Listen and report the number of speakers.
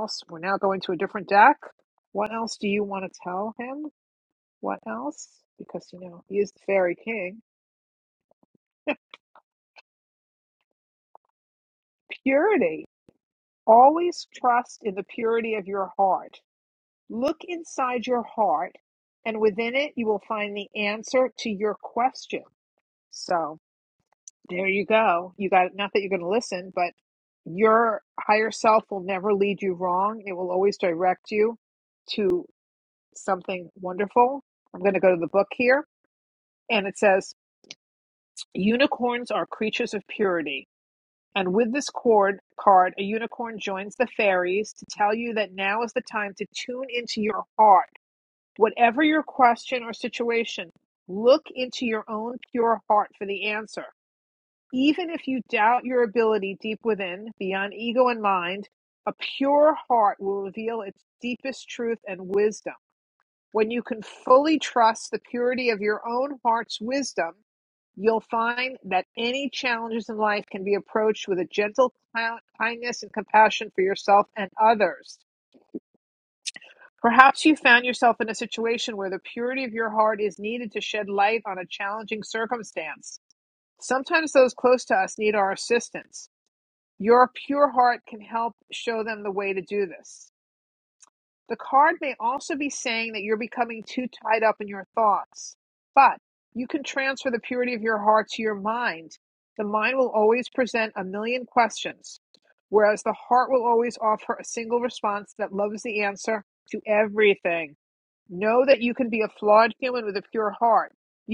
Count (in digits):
1